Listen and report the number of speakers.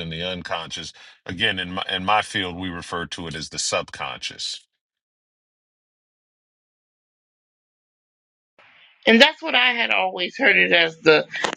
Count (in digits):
2